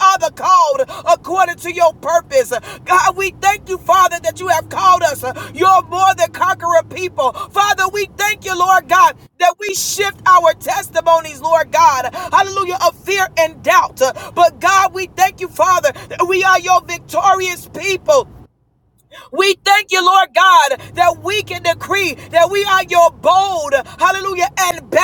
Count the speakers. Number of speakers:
1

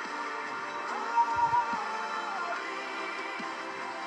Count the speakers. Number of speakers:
0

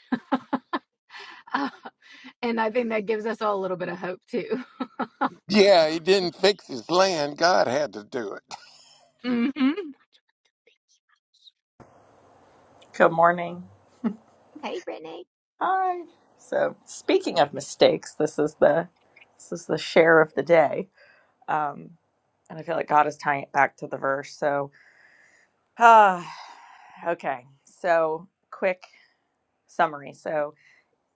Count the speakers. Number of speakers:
3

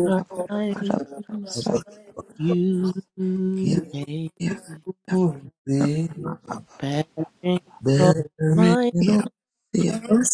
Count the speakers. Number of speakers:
3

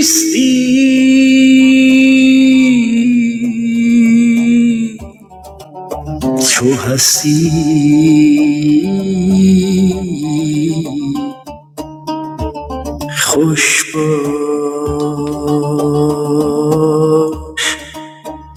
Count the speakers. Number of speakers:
1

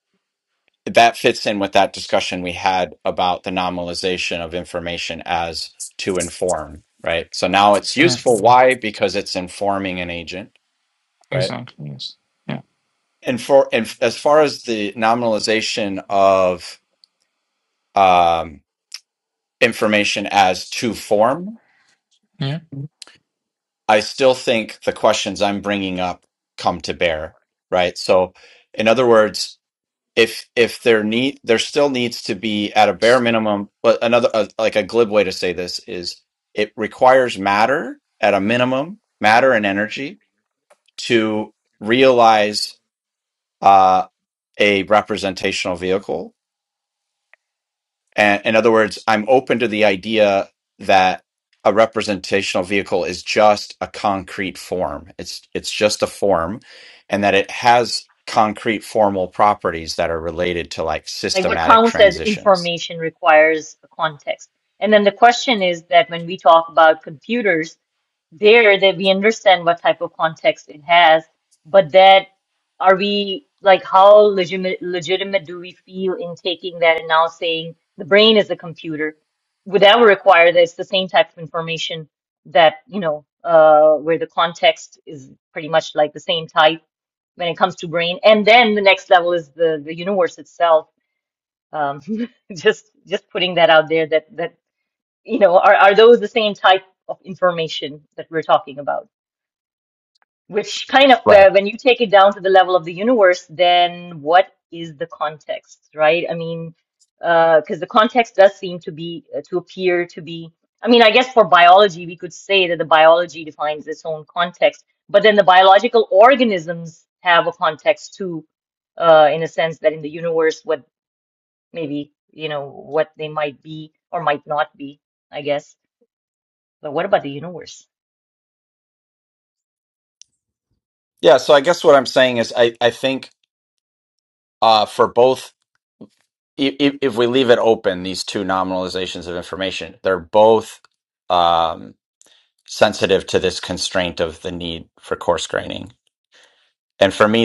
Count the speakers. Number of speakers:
3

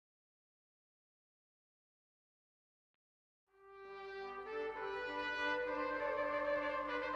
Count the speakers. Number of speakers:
0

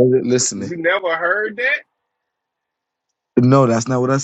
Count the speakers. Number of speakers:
2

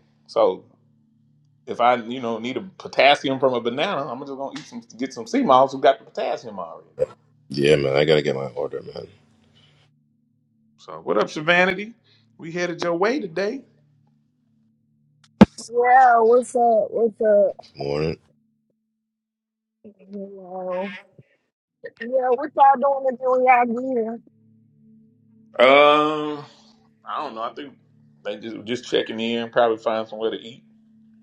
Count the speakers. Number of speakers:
3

